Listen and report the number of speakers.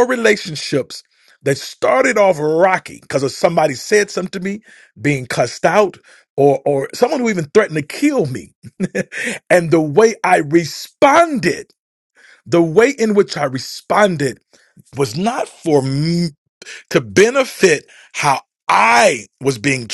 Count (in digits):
1